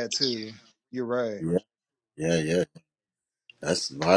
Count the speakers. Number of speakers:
2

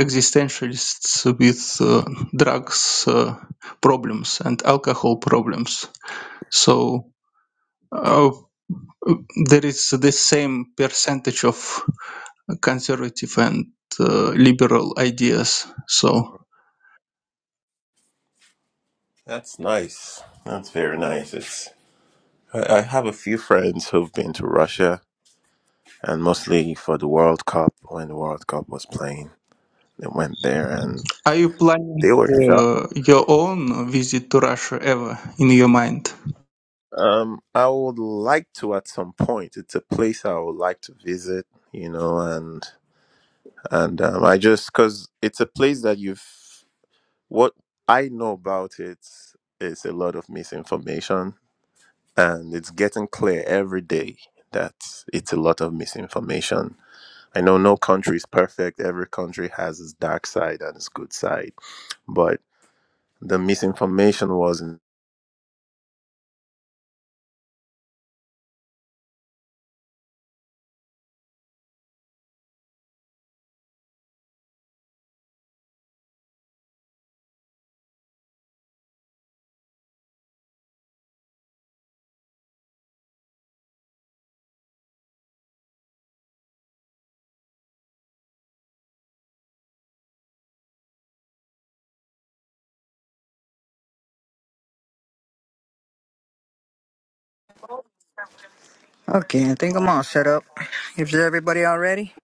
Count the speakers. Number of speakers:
3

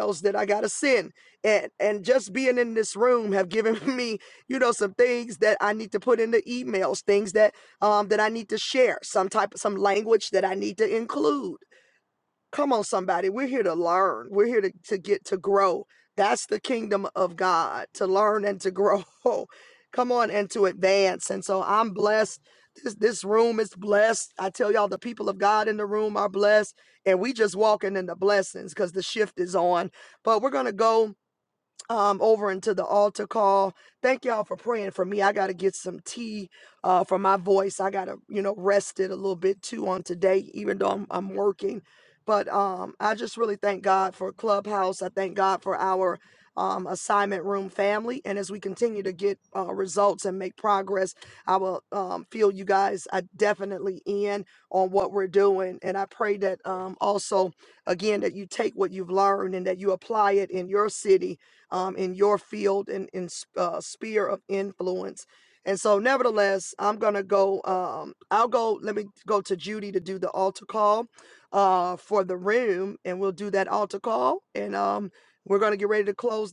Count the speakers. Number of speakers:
1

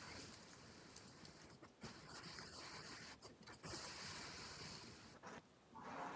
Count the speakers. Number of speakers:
0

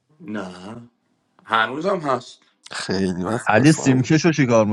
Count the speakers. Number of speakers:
3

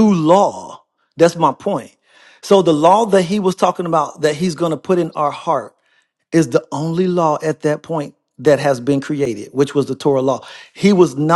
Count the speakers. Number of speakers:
1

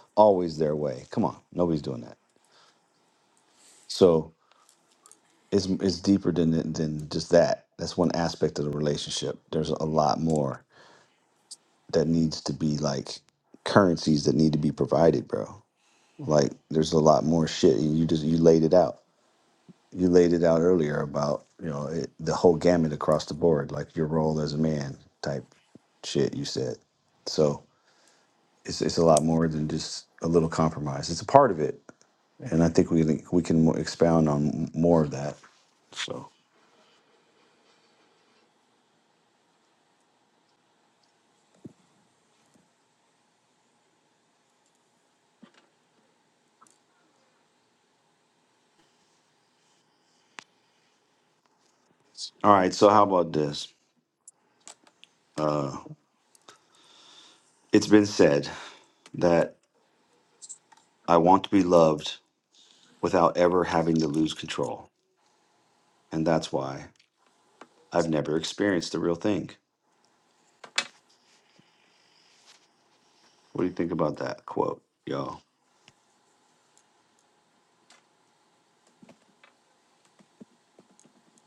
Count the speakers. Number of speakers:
1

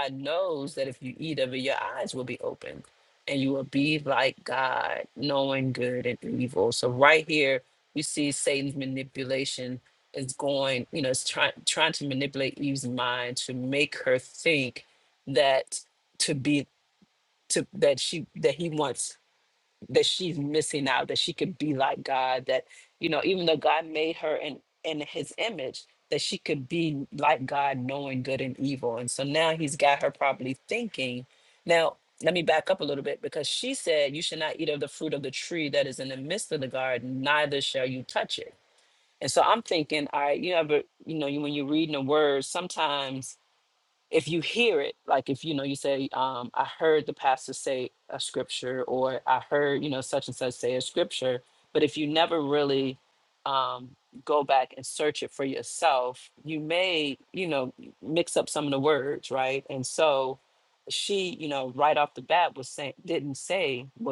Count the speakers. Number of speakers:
1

